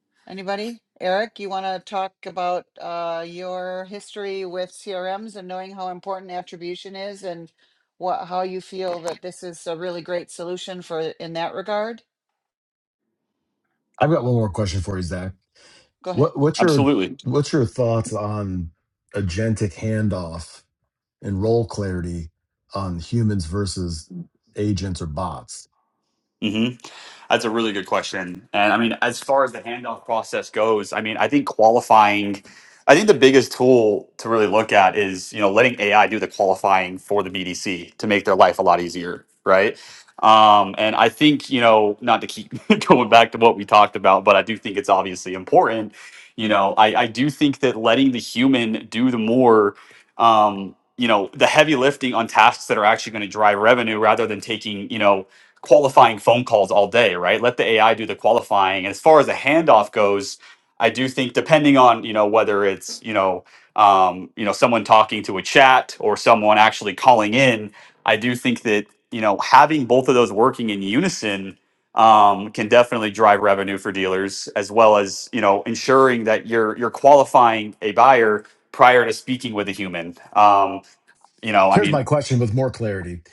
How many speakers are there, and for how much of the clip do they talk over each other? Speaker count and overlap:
three, about 1%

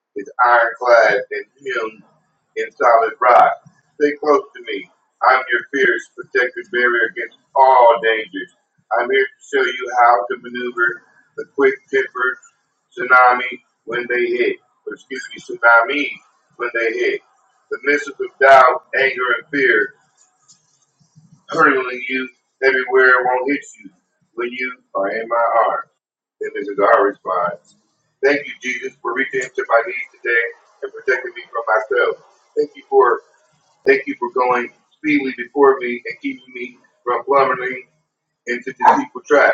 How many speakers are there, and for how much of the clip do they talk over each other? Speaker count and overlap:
one, no overlap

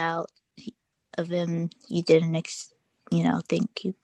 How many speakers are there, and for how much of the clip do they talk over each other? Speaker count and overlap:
one, no overlap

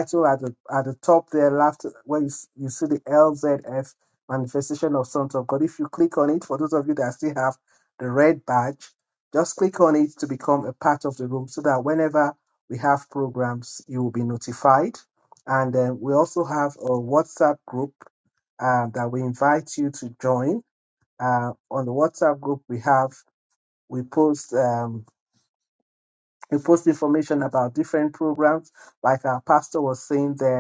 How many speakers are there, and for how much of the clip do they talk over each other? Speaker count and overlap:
one, no overlap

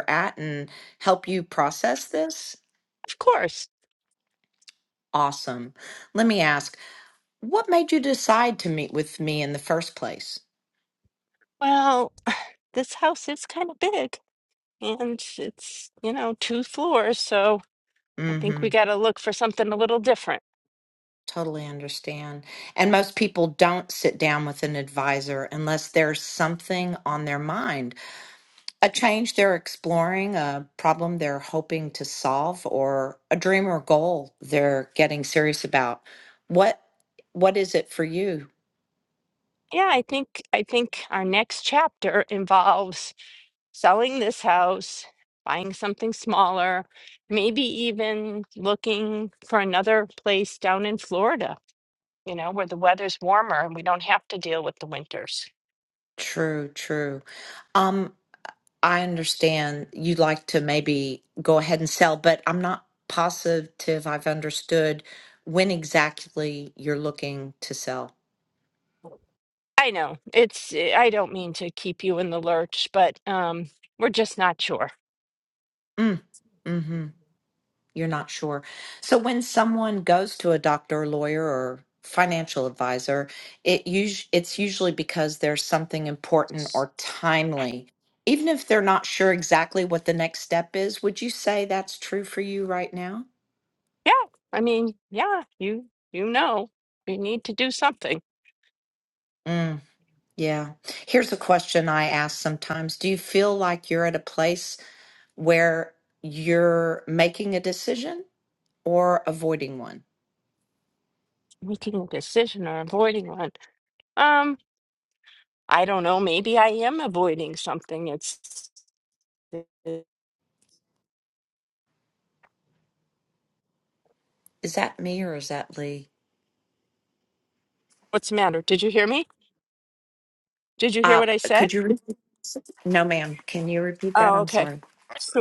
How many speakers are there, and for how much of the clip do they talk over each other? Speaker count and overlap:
two, about 1%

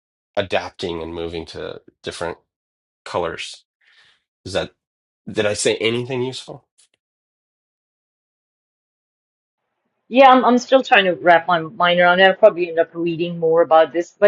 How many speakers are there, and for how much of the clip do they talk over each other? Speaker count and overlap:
two, no overlap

